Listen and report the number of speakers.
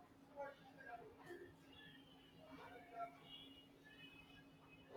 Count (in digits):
0